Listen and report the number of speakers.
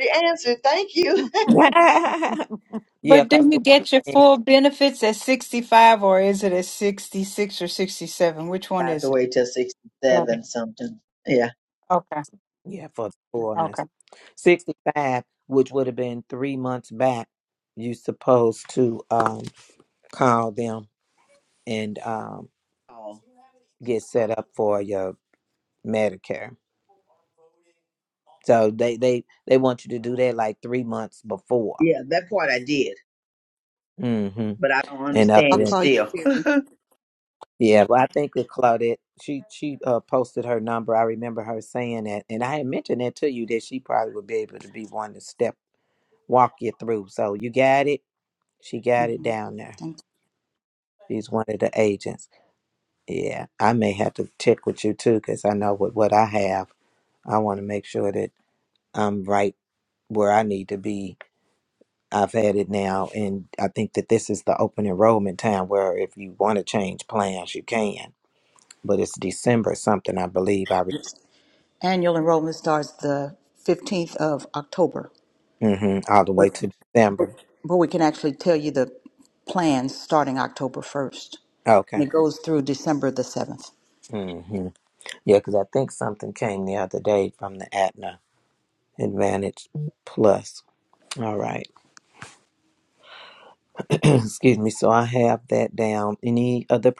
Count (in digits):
4